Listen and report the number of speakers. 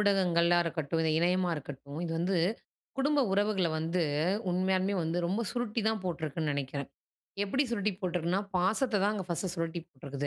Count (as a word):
one